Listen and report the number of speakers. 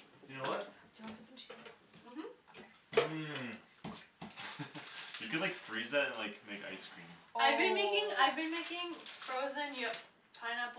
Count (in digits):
4